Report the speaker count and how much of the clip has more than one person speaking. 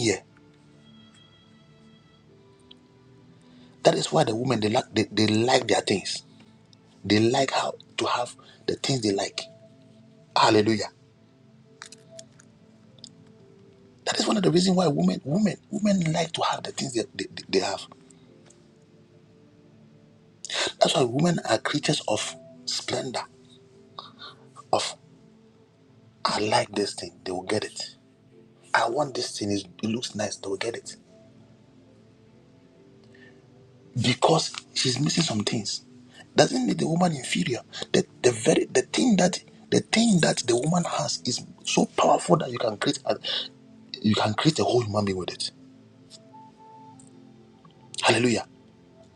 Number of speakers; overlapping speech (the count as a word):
one, no overlap